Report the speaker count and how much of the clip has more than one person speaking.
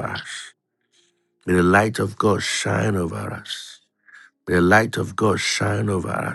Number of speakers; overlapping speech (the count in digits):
1, no overlap